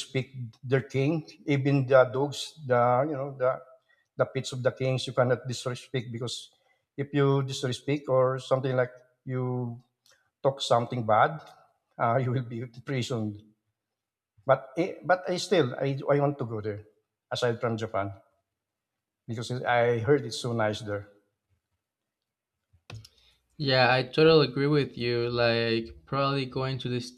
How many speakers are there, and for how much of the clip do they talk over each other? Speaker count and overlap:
2, no overlap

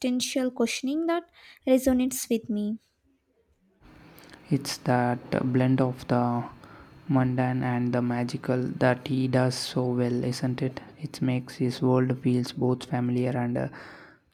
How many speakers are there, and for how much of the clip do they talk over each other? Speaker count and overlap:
2, no overlap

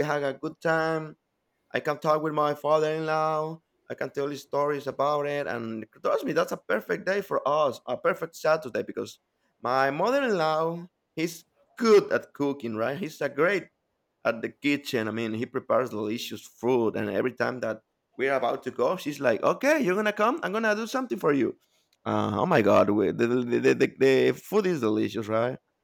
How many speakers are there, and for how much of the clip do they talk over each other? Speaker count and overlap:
1, no overlap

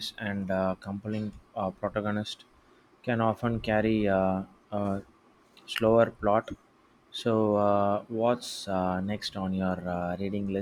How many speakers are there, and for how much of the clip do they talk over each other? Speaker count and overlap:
1, no overlap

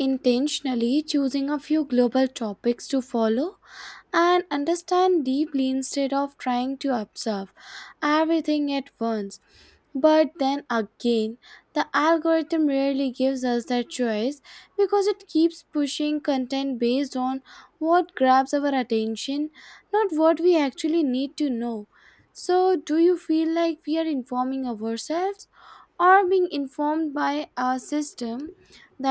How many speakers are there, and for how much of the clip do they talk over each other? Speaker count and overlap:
1, no overlap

